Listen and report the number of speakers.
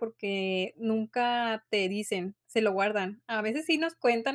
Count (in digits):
1